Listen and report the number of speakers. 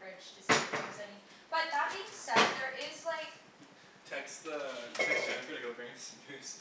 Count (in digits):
2